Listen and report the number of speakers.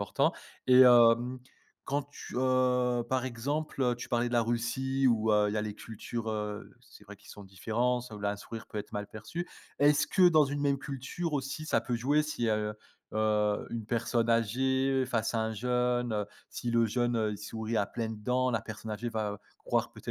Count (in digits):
1